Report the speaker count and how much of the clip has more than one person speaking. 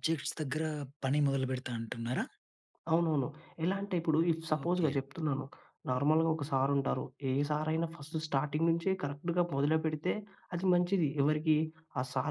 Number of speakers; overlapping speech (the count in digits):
2, about 3%